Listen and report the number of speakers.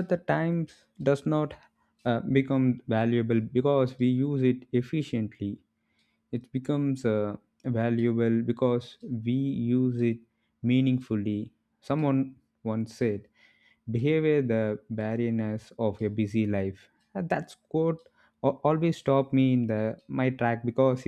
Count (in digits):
1